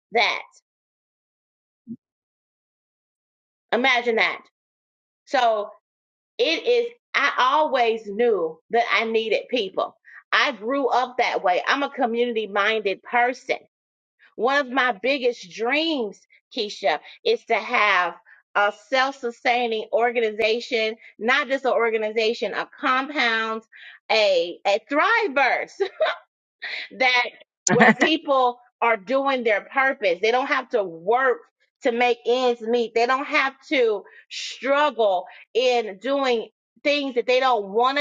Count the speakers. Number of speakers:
one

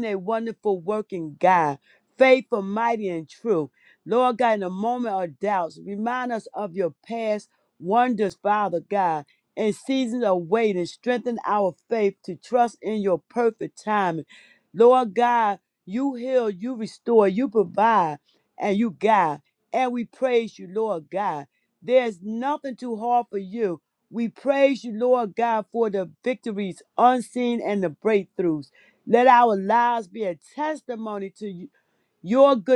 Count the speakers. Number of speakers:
one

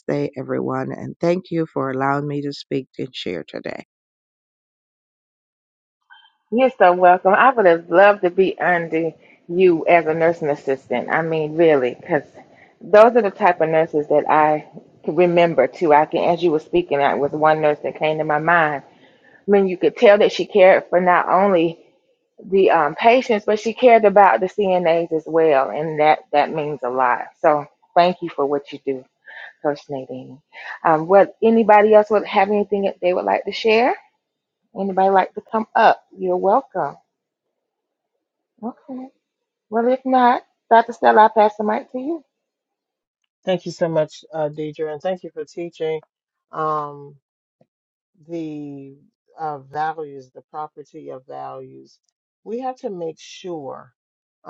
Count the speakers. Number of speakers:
three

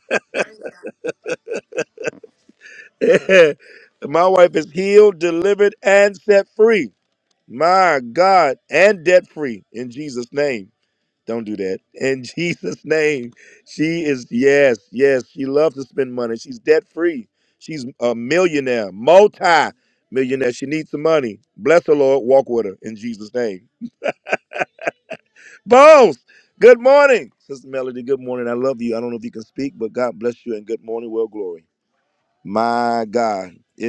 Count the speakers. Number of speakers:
one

